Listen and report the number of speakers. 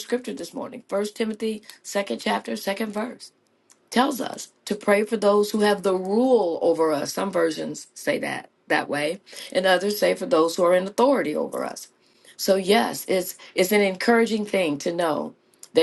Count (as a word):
one